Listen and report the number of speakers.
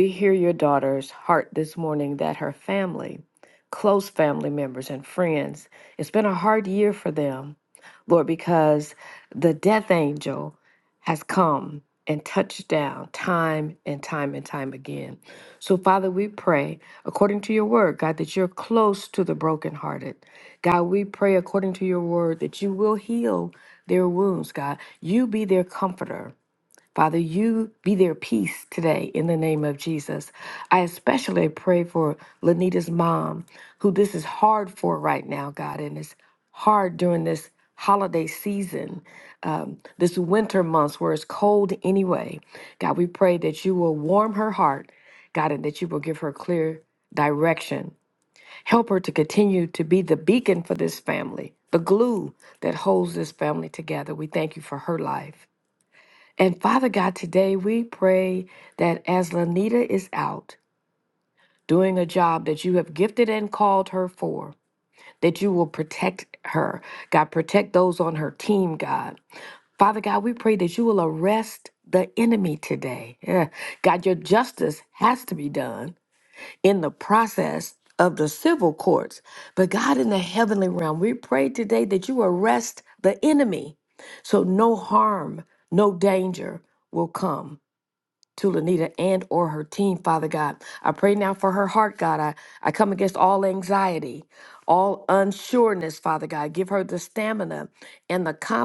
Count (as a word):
one